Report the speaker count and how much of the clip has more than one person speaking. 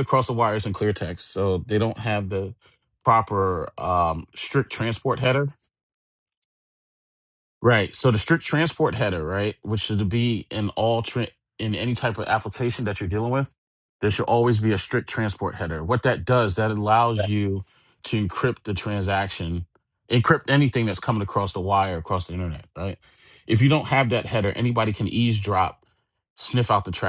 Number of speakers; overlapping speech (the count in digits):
1, no overlap